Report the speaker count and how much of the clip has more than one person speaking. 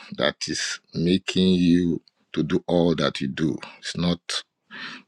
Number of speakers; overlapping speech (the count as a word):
one, no overlap